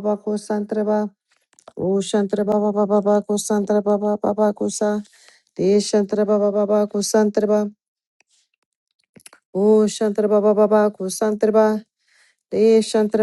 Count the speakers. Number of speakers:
1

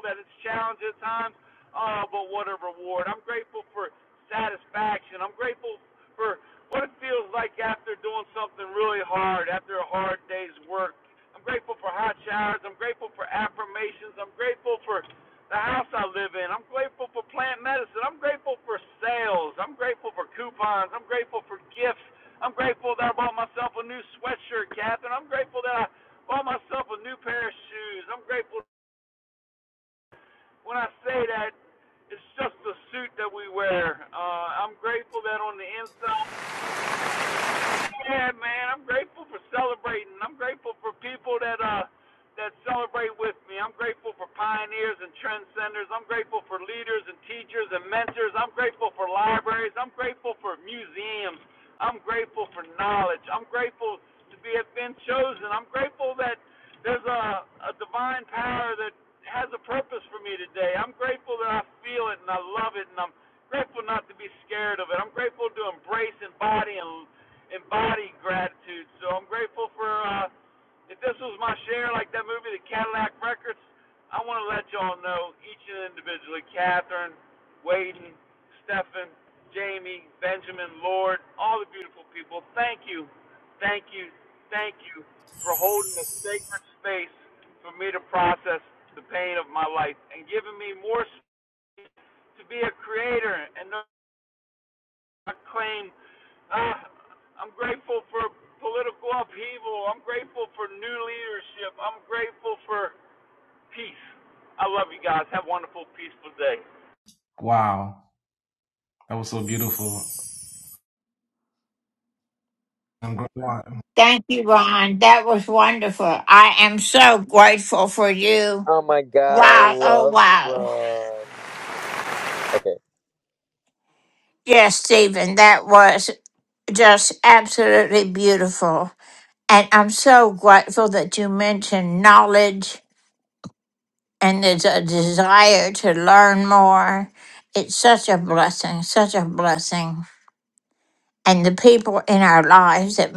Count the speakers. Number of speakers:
4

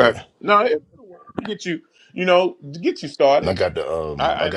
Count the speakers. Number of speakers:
2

